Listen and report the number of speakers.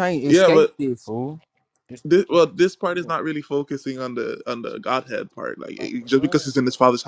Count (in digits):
2